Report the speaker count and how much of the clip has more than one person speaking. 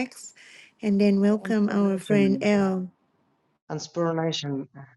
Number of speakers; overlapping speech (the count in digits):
2, about 24%